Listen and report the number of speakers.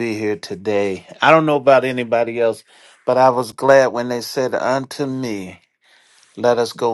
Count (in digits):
1